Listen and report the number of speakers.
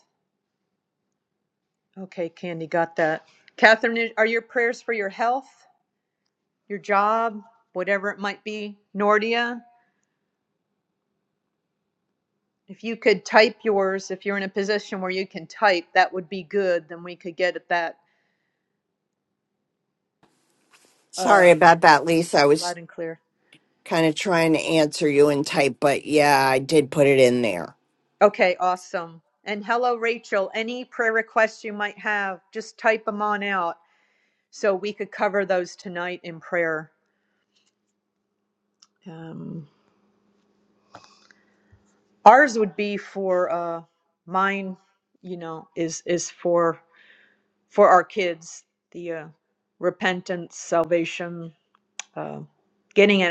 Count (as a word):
two